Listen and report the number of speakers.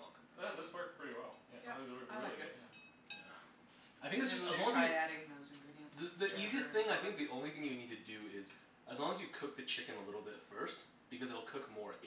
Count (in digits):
3